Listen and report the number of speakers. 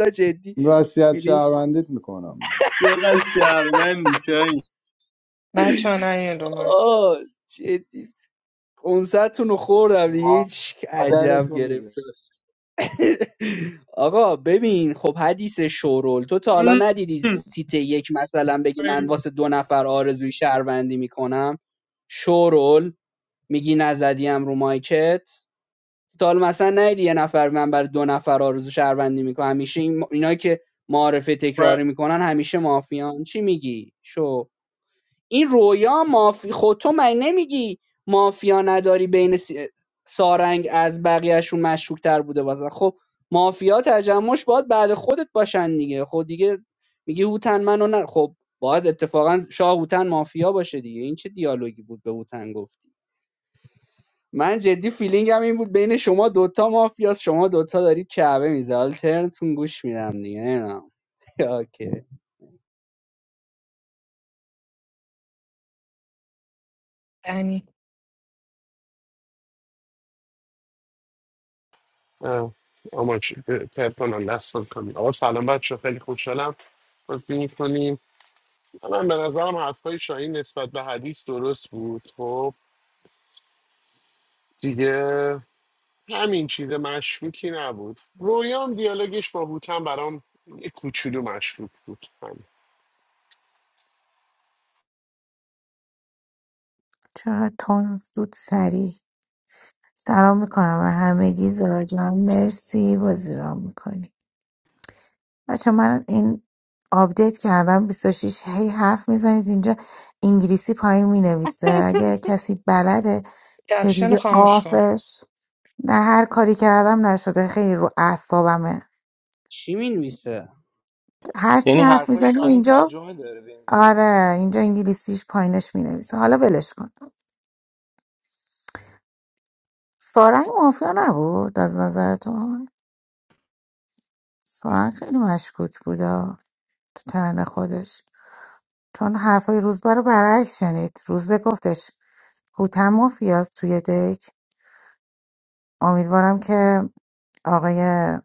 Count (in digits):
7